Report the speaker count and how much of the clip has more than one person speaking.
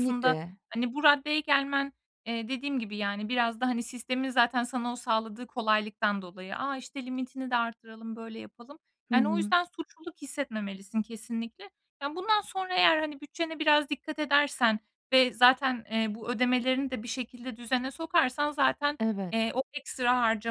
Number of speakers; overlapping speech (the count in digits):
2, about 4%